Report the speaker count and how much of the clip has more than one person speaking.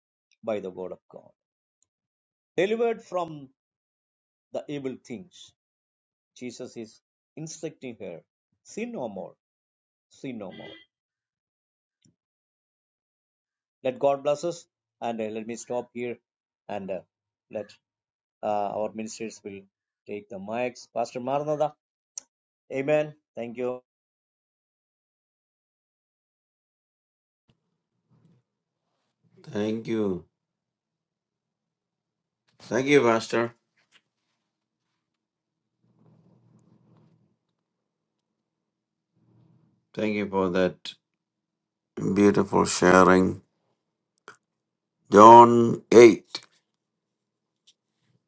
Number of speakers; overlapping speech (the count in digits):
2, no overlap